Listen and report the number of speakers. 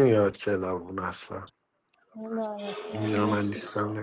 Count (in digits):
2